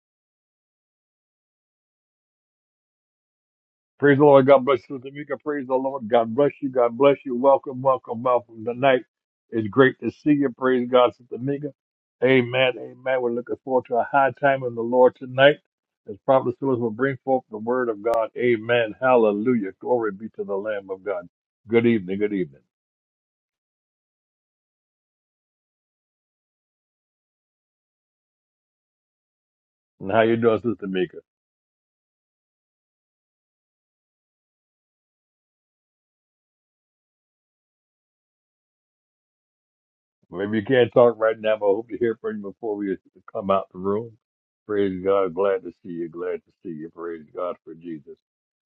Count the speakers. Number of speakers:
one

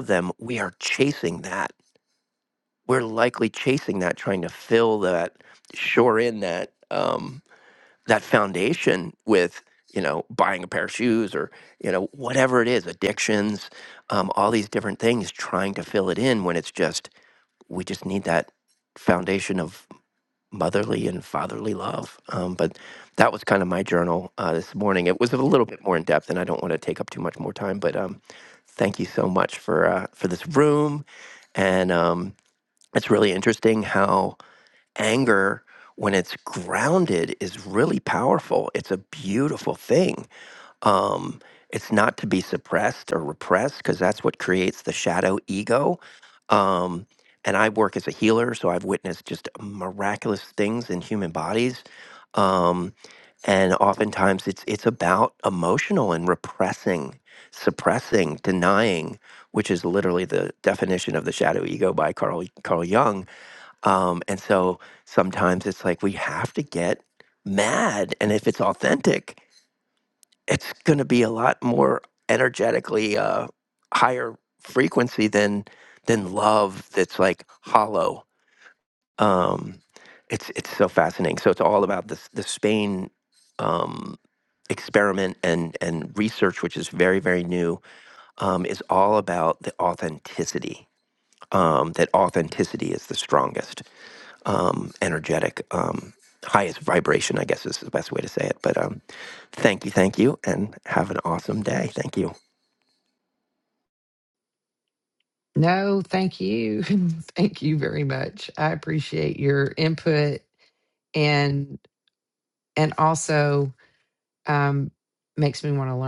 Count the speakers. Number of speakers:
two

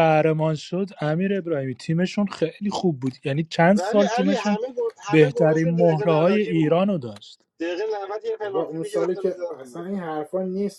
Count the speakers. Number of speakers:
three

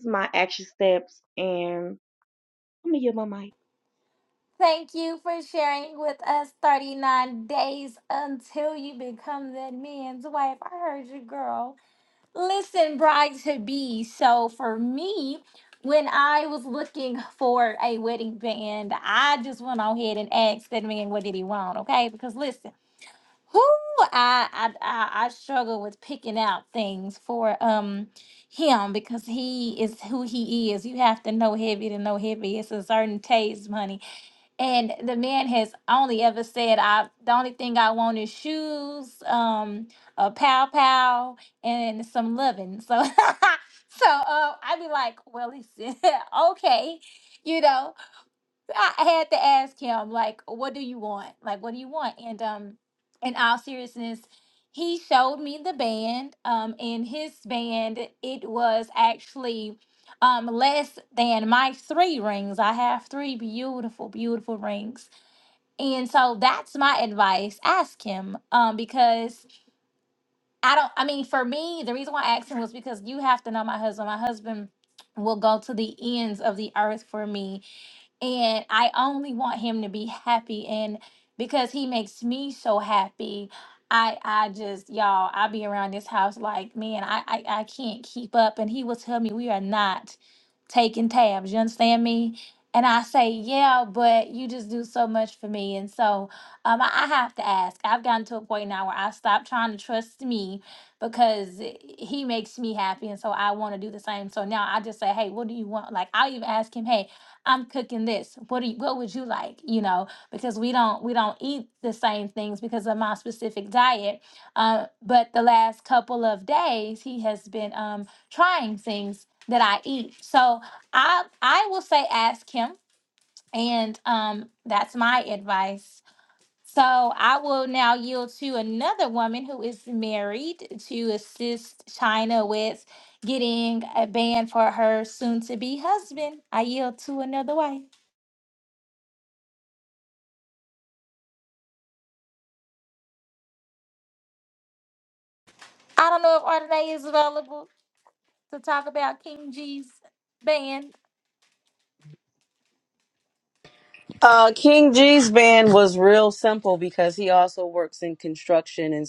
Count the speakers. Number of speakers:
three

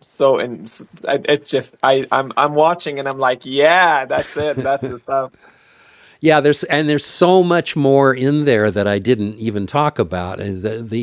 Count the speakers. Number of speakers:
two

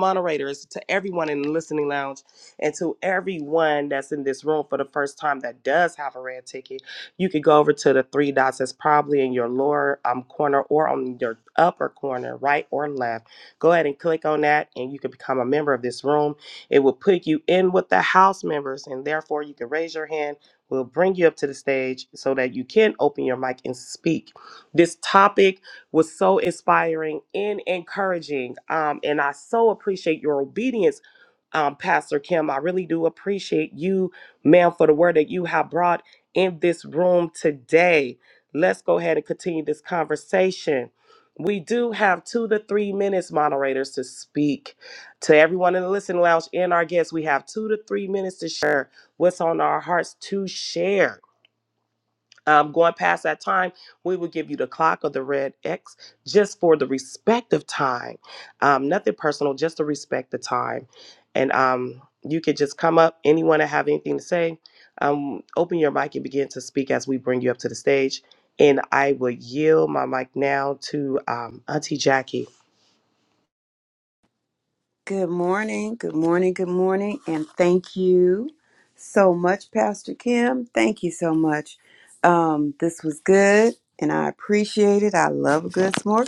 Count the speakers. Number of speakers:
two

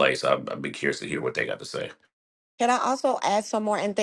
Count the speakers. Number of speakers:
two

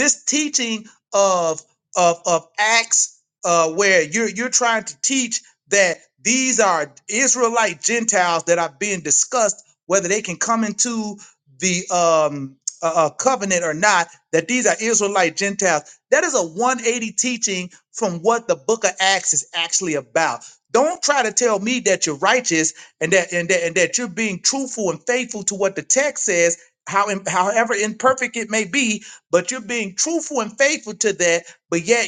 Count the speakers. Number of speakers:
one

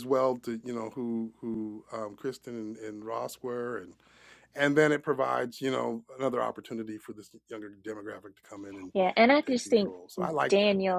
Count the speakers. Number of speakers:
two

